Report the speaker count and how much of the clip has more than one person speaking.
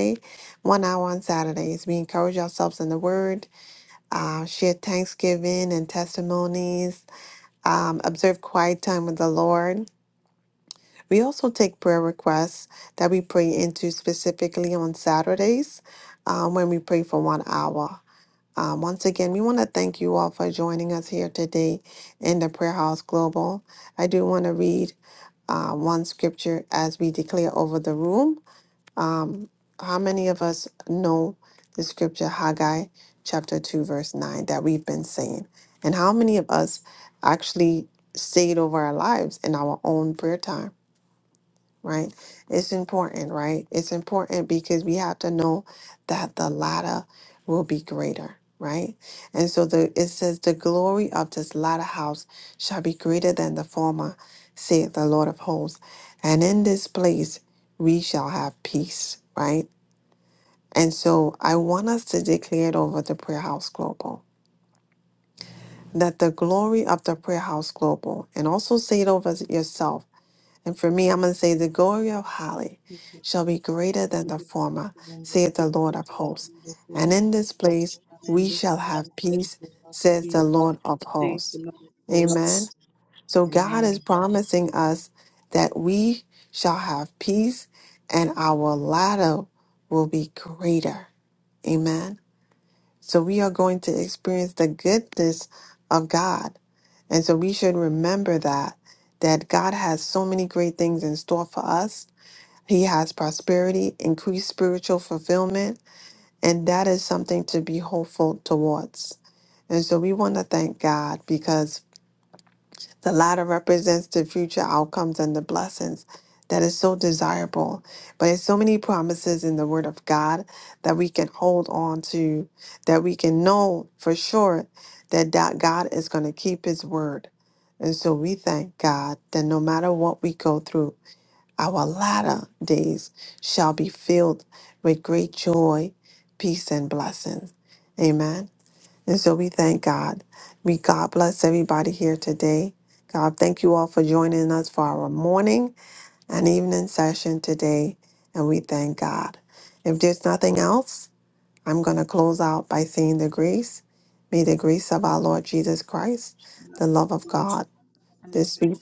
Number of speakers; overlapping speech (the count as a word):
two, about 2%